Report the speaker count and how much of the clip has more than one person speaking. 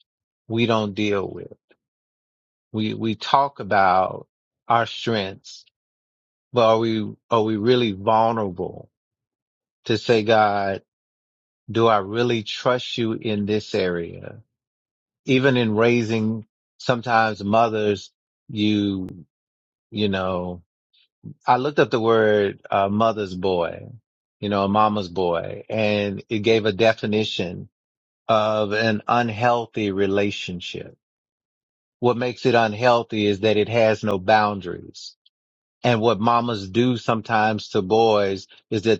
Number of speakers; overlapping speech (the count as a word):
one, no overlap